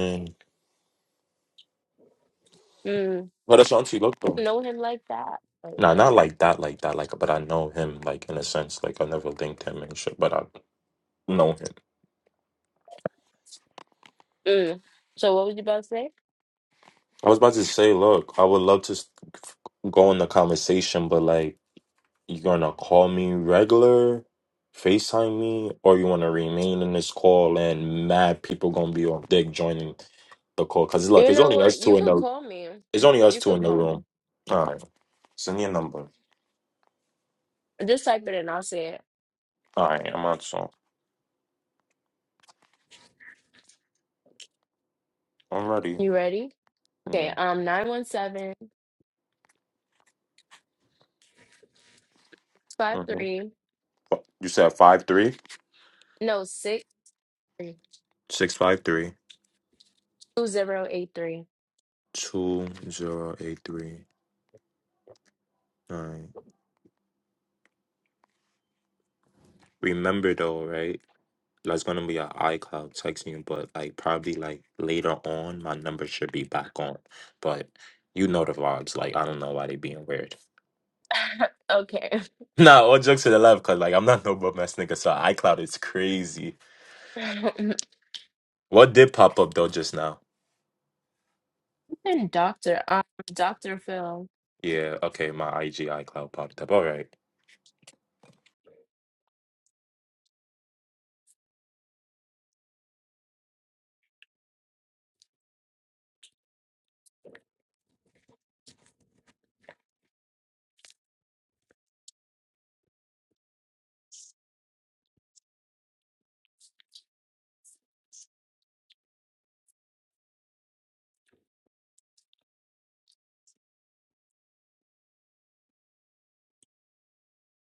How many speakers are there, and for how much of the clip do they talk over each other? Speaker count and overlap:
2, about 2%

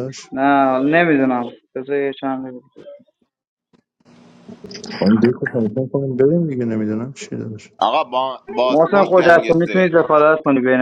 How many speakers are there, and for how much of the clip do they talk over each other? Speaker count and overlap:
3, about 13%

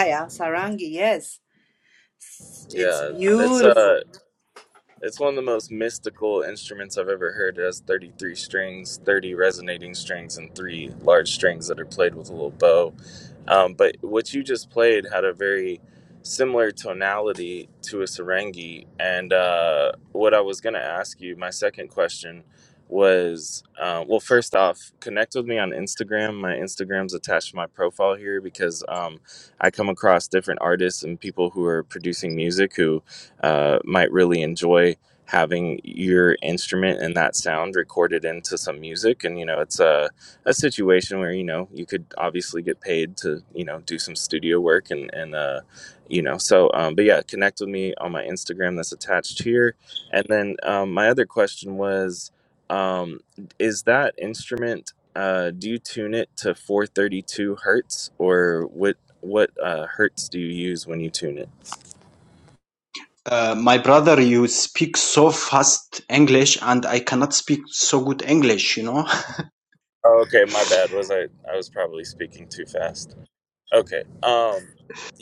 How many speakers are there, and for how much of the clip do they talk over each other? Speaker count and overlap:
3, about 2%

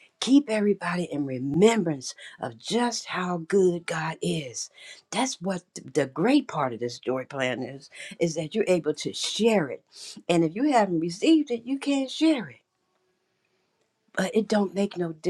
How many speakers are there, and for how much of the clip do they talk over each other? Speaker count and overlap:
1, no overlap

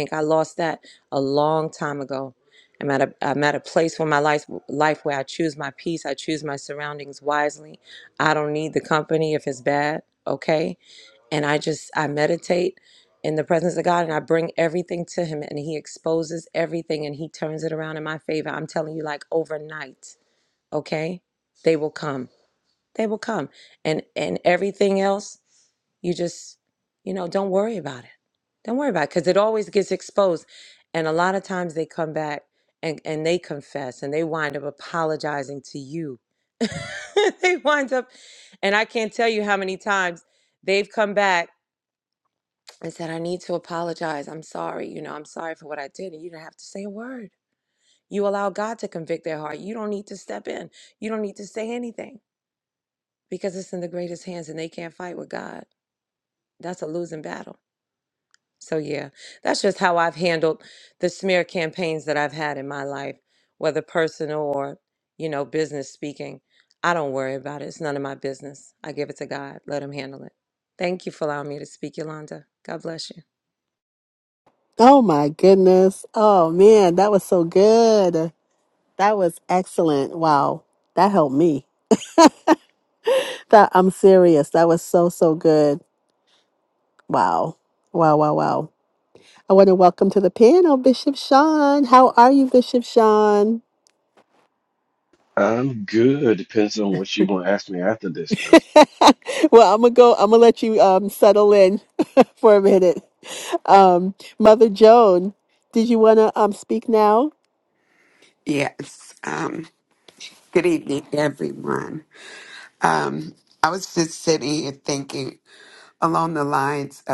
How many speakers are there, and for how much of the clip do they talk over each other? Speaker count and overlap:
4, no overlap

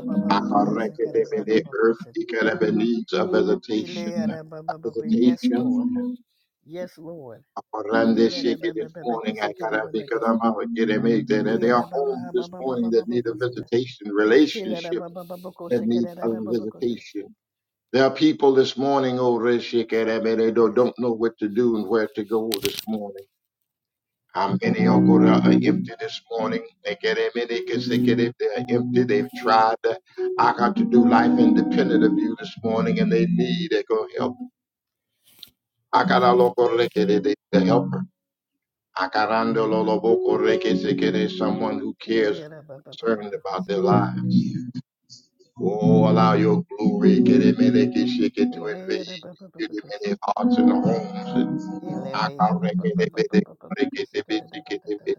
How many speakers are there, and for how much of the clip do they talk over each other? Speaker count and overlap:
2, about 29%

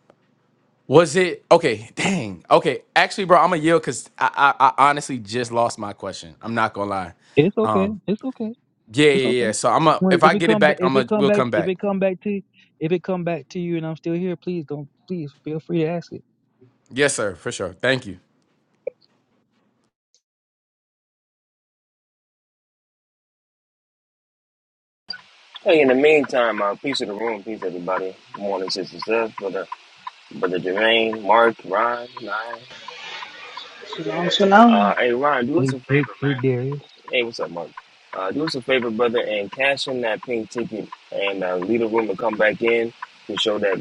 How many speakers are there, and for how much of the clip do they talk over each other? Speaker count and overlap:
4, about 8%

